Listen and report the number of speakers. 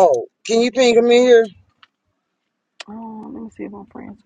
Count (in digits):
2